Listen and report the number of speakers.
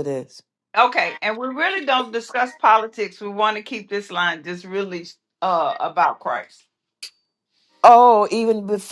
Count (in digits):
2